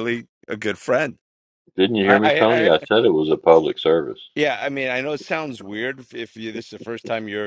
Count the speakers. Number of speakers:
two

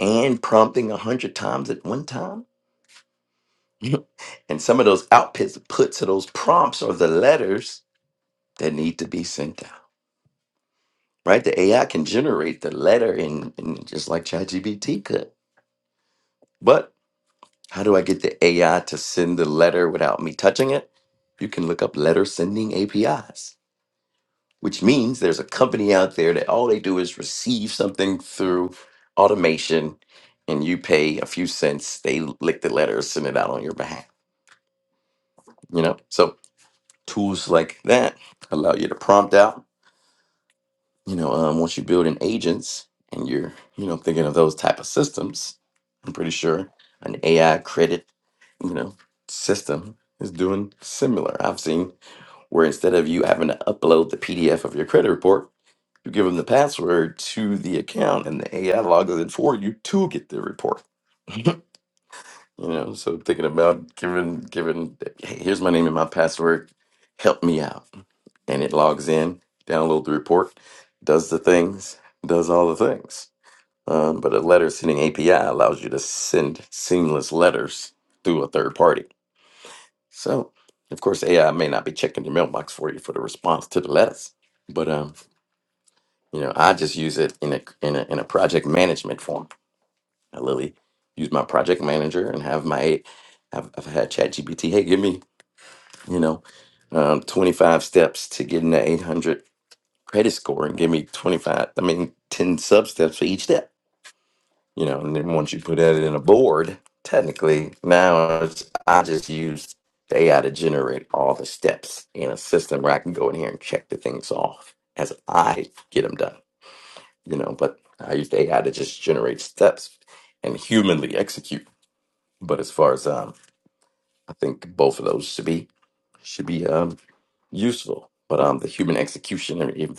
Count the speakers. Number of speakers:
one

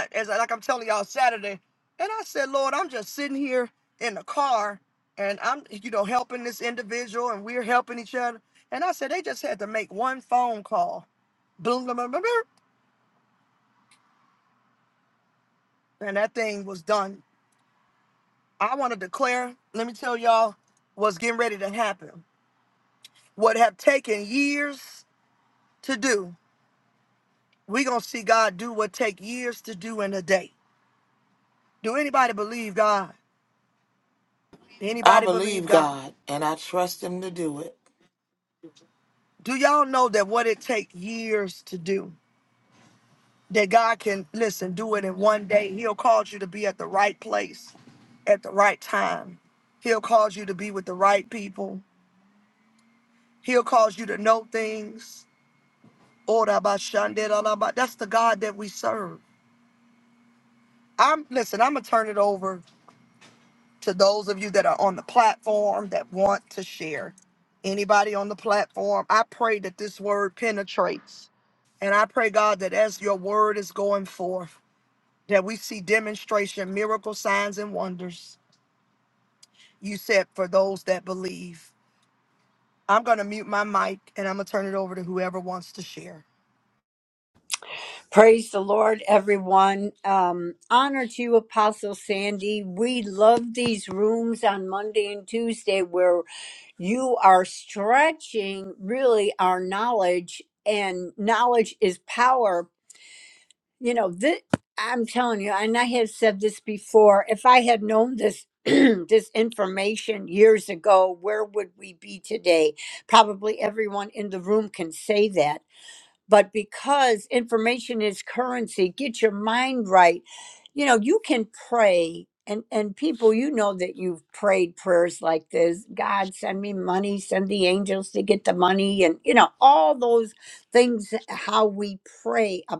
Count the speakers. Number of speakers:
three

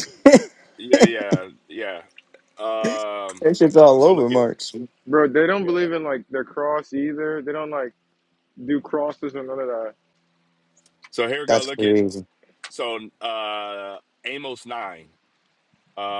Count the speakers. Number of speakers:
three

